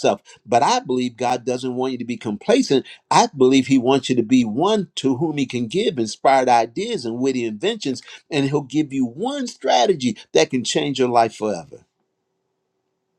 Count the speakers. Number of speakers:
1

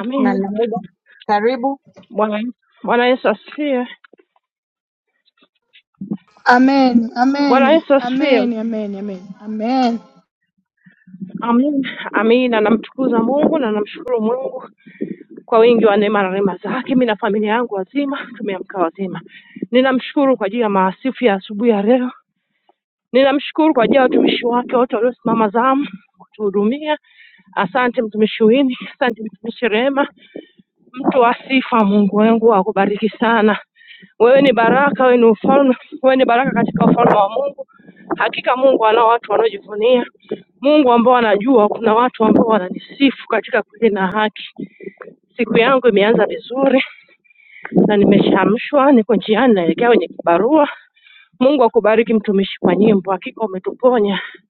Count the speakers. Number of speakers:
3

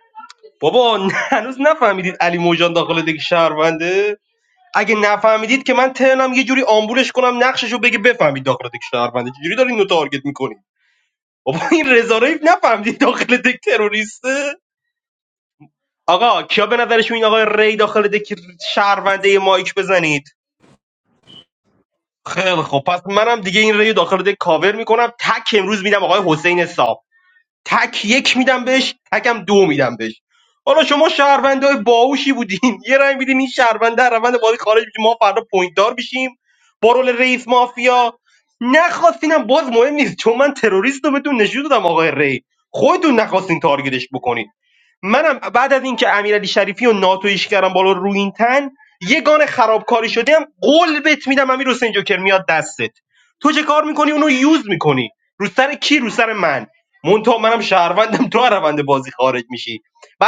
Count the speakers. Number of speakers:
1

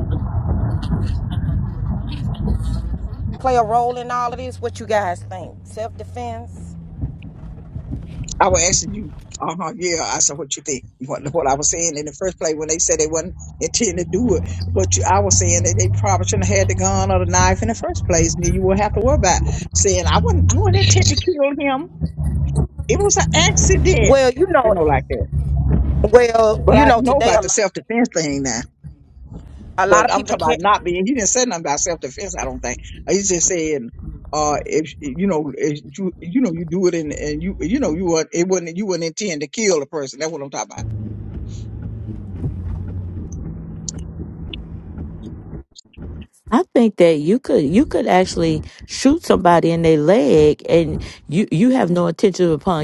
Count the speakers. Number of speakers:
3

